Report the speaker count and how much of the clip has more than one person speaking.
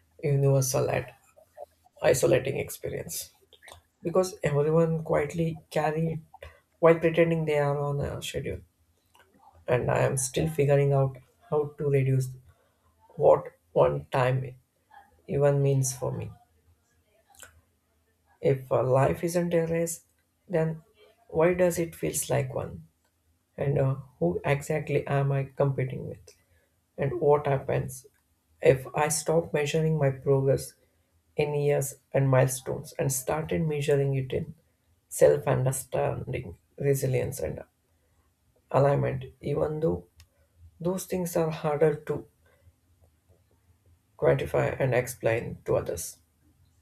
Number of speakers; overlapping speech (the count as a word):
one, no overlap